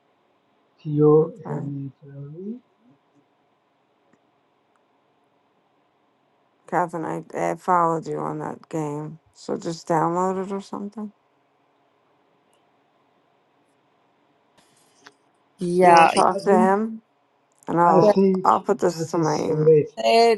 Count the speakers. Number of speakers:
3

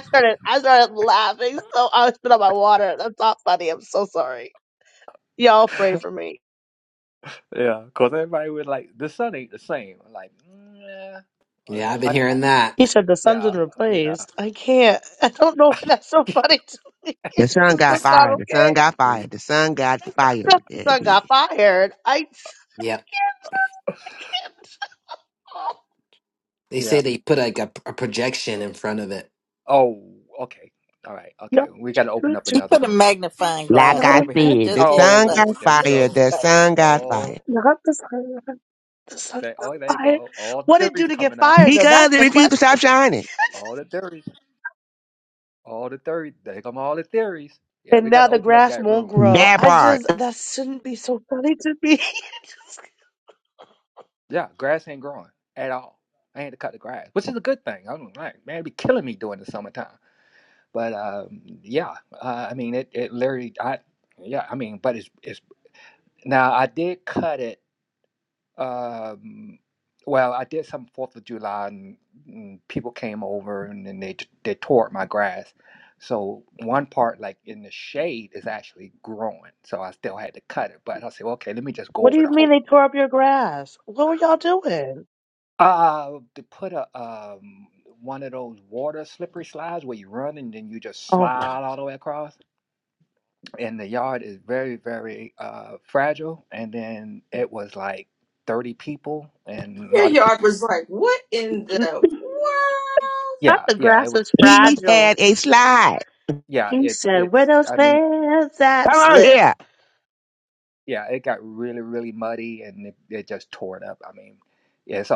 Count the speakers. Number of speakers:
6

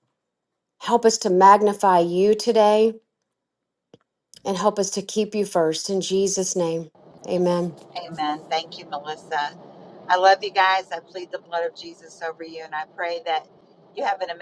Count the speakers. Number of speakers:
2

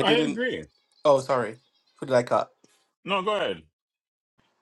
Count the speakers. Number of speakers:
2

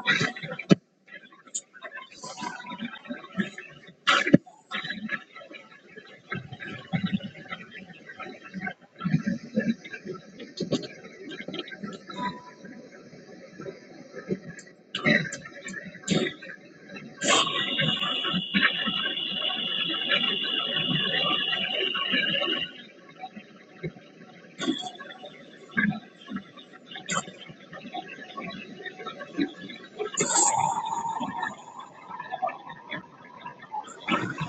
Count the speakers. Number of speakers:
0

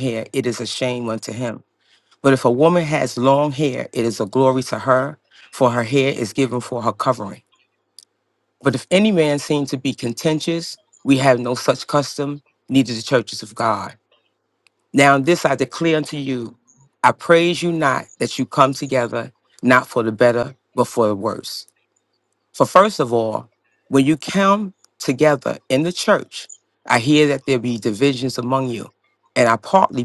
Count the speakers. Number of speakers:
1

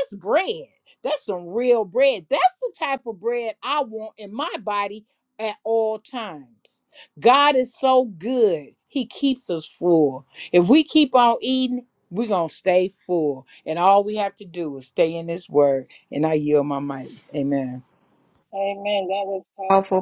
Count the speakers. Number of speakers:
2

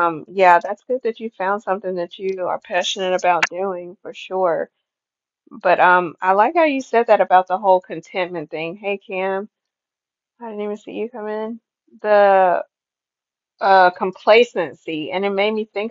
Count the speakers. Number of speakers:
1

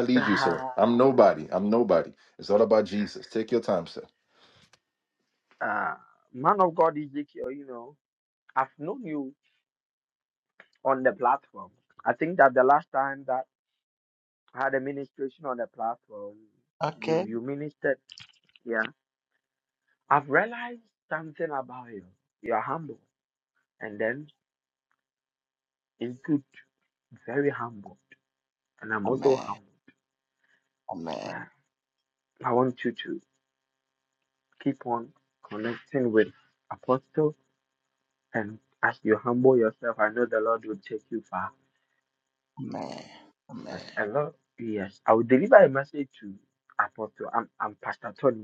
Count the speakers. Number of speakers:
3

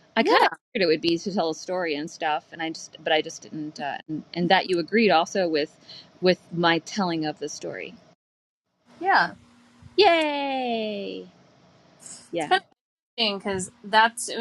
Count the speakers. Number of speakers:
2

